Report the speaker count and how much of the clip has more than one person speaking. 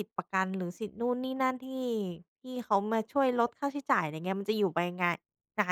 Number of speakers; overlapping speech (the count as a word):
one, no overlap